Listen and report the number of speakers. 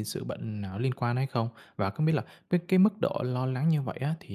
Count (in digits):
1